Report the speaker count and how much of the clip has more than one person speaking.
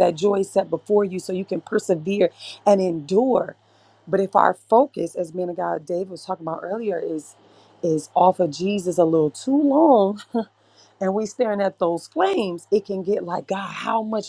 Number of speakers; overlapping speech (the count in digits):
1, no overlap